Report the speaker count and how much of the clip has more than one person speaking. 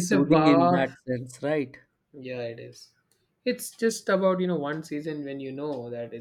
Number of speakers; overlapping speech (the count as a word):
two, about 16%